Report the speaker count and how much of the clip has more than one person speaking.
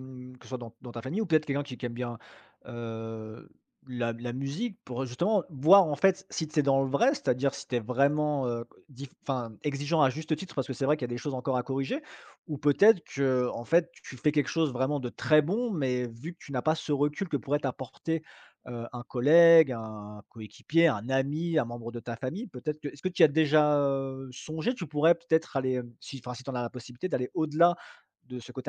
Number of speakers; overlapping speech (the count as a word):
one, no overlap